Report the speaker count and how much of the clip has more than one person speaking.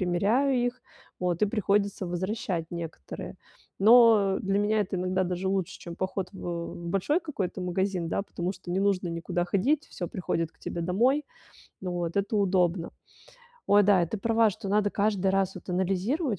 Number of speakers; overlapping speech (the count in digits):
1, no overlap